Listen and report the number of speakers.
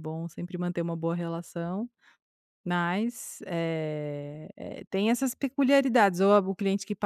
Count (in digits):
1